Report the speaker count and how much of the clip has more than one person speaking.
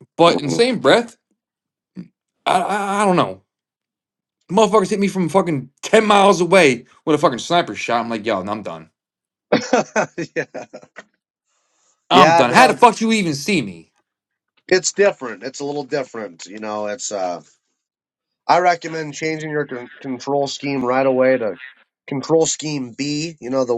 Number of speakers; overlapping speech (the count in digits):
2, about 4%